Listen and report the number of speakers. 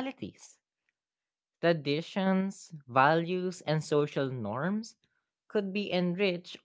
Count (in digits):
1